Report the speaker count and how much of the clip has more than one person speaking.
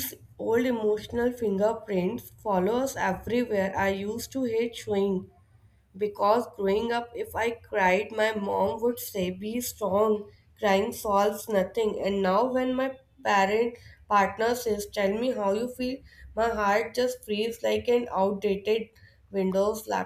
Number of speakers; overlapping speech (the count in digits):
1, no overlap